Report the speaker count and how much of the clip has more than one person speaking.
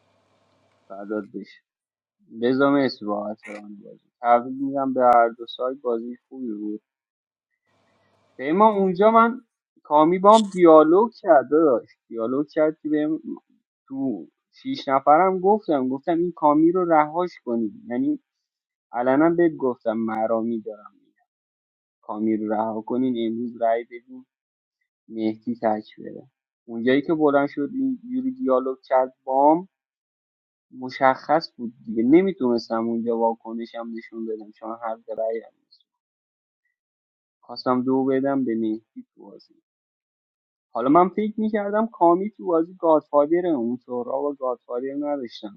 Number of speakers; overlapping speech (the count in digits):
1, no overlap